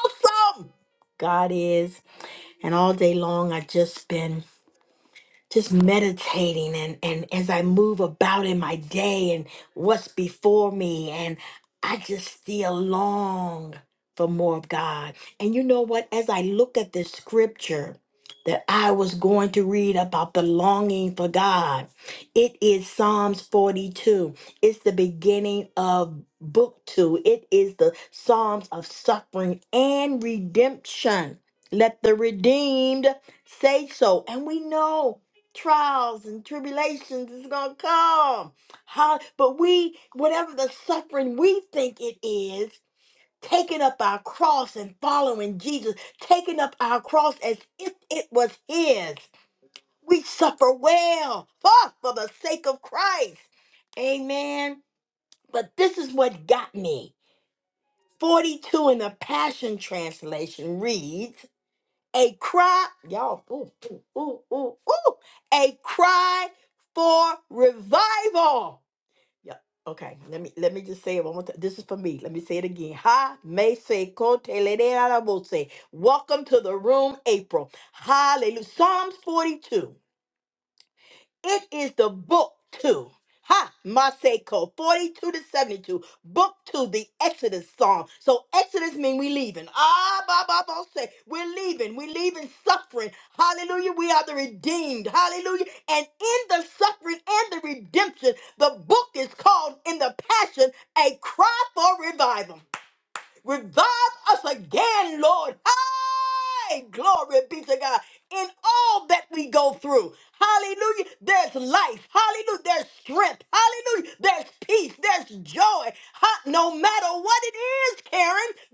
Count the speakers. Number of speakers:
1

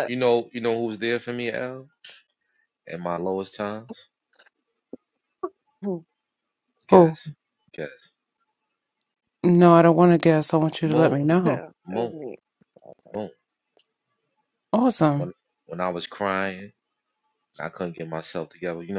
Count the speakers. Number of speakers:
3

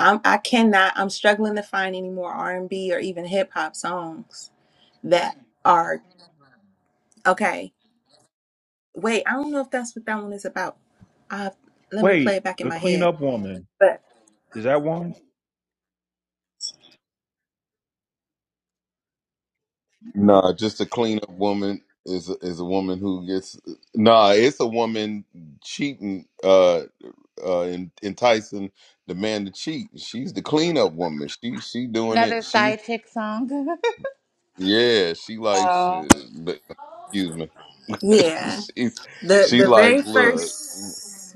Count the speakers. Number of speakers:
4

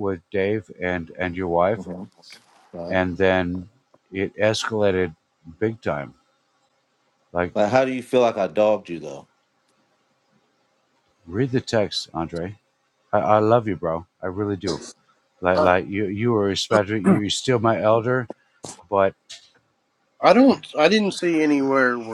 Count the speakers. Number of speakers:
3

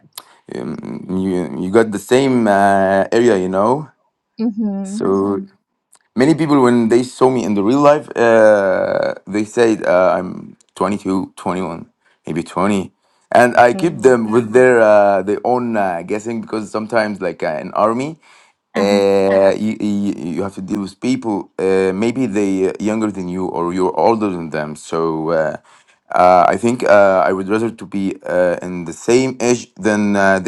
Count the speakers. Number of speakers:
2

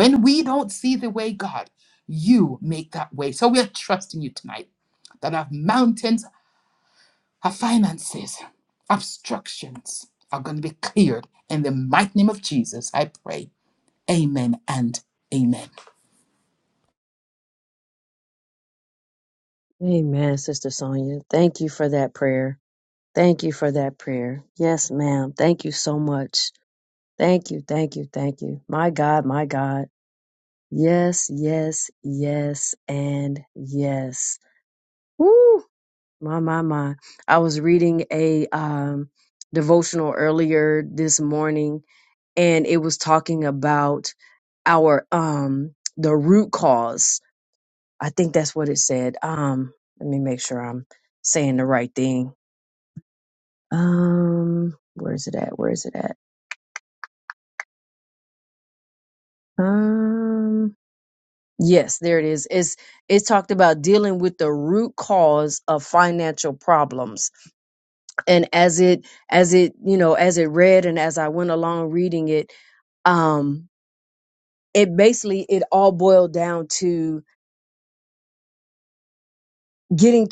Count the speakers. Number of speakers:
2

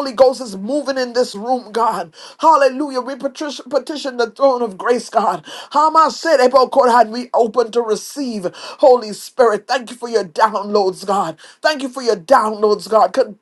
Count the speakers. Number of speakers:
1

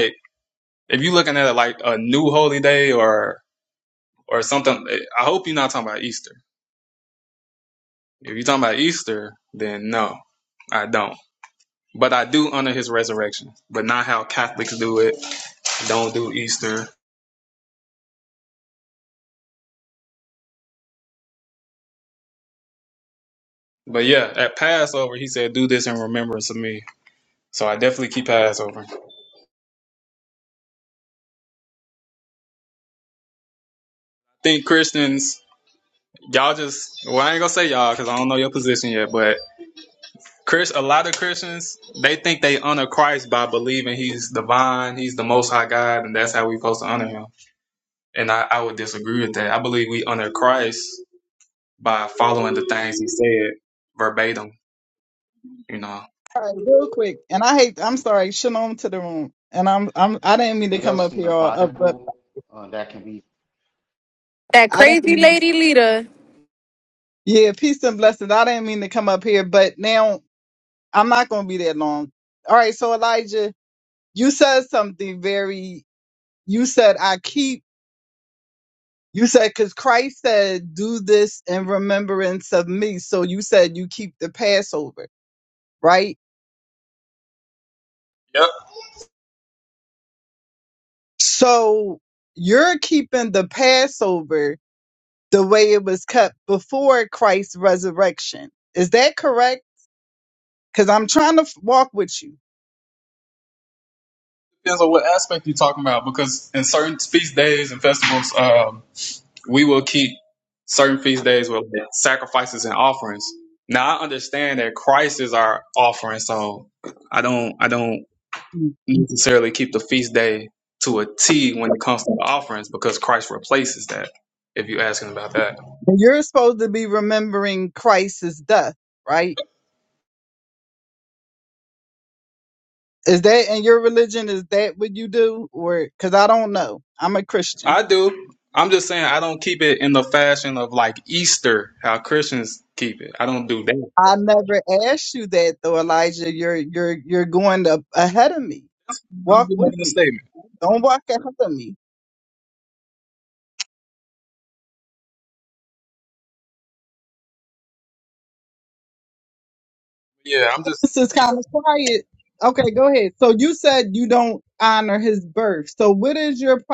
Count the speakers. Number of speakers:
4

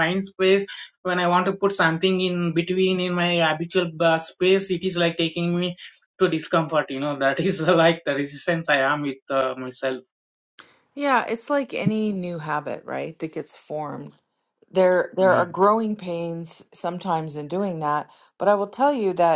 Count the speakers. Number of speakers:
2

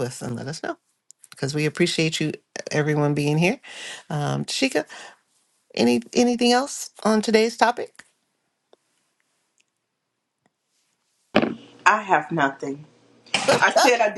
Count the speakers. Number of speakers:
2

